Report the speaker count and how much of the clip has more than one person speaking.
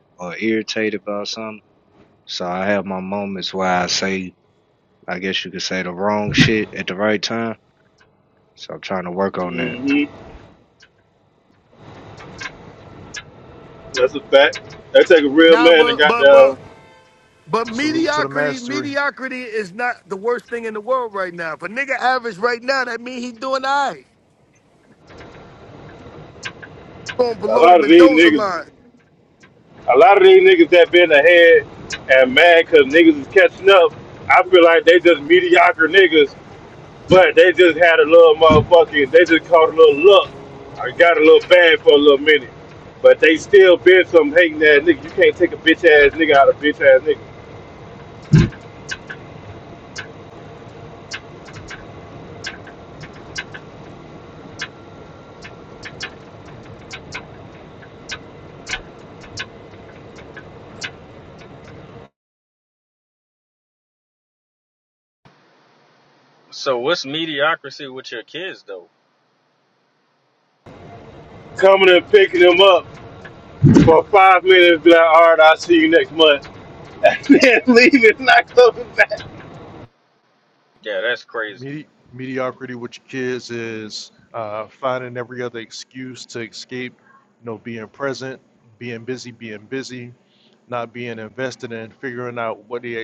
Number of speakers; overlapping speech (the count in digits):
5, about 4%